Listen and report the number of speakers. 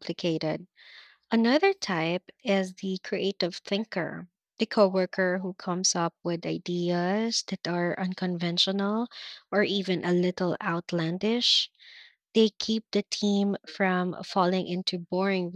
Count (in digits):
1